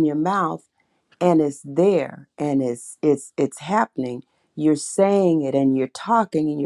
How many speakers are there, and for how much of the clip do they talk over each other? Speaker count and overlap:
1, no overlap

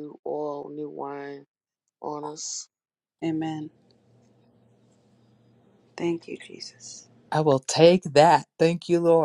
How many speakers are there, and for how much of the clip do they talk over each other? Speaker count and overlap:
3, no overlap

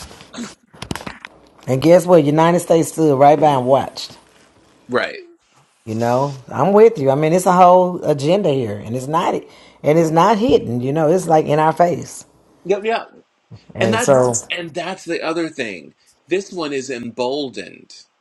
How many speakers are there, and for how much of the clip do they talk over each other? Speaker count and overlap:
2, about 2%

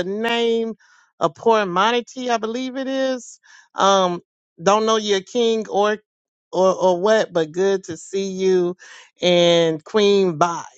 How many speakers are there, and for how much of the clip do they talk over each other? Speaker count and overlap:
1, no overlap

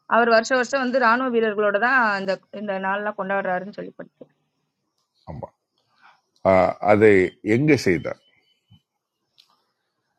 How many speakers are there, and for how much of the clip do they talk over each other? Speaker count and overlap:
2, no overlap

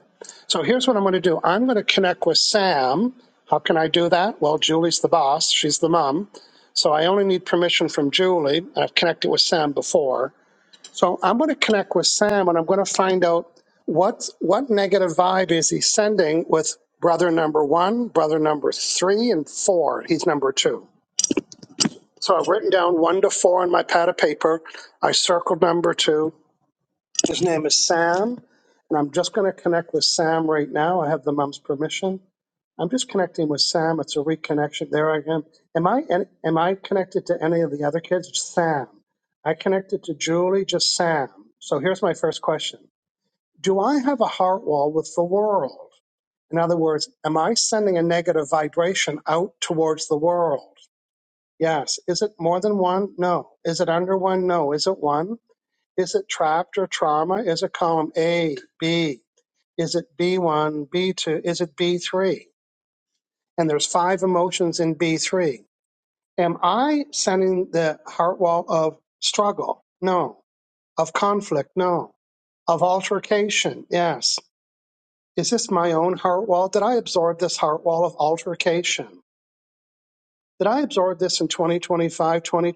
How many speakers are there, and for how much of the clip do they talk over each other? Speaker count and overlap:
1, no overlap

